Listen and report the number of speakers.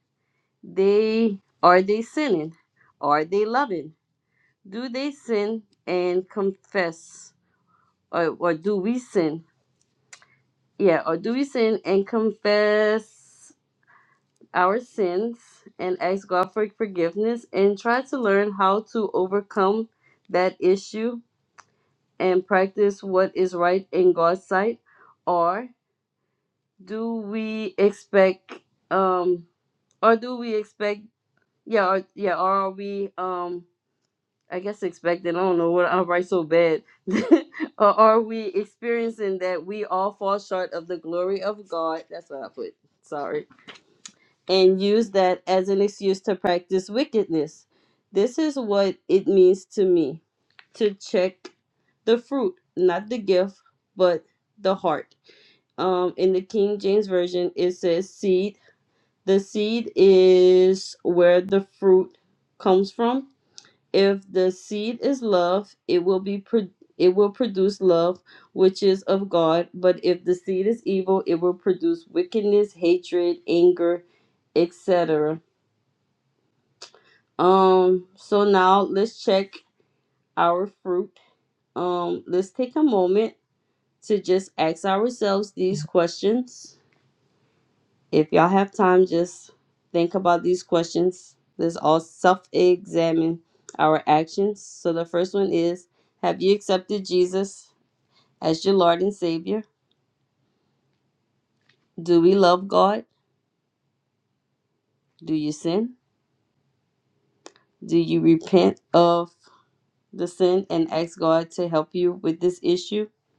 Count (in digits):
1